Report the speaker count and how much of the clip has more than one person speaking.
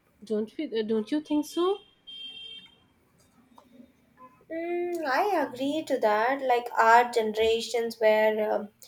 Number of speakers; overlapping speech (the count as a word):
two, no overlap